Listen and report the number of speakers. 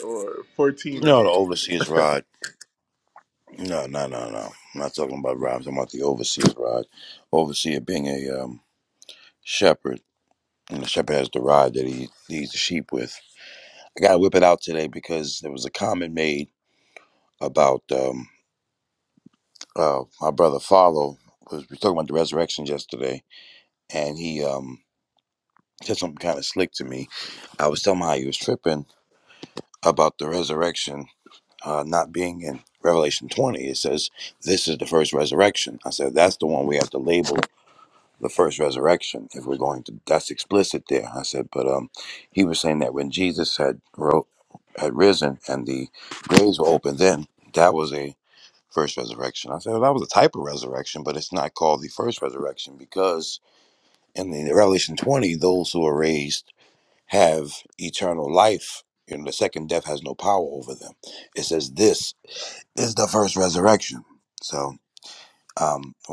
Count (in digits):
2